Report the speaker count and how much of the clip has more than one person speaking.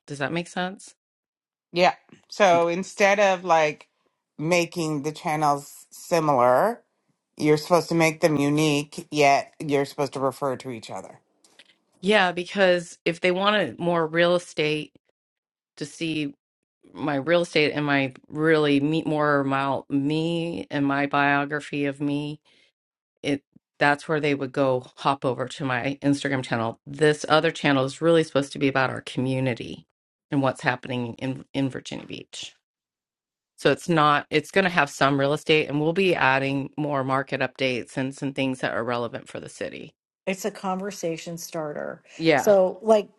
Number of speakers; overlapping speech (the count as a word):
three, about 1%